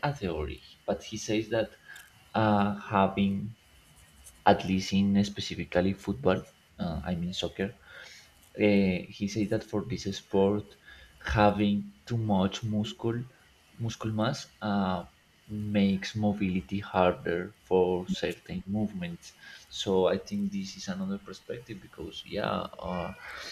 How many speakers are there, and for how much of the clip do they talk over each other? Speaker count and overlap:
1, no overlap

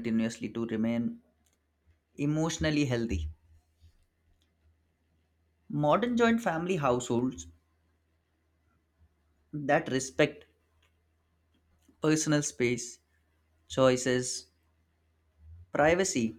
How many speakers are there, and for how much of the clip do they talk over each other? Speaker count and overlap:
1, no overlap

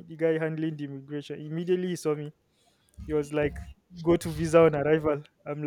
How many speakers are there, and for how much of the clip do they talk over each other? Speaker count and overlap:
1, no overlap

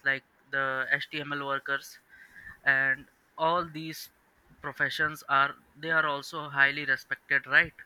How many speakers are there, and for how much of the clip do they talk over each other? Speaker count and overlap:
1, no overlap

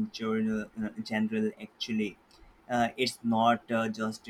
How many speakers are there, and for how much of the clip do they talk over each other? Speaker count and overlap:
1, no overlap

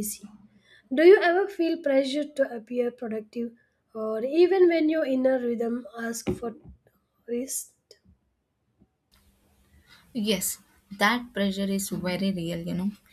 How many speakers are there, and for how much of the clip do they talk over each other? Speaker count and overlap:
2, no overlap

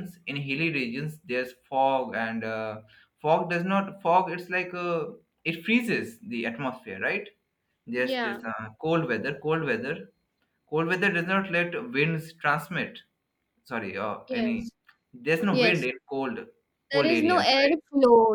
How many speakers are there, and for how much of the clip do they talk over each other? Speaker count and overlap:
2, about 10%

